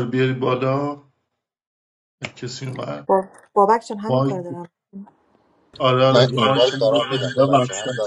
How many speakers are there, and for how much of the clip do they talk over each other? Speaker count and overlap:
3, about 16%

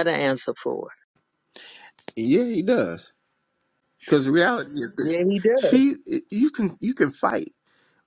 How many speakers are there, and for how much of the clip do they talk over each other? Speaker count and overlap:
2, about 4%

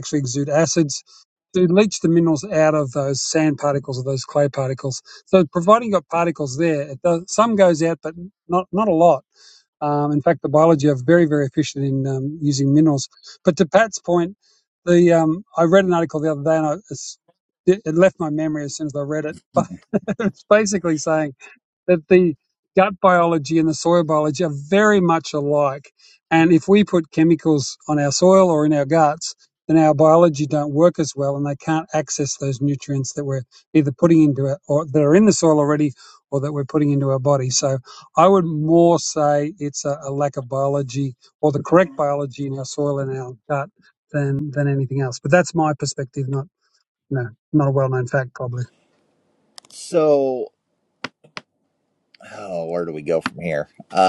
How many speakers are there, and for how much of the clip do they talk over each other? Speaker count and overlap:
2, no overlap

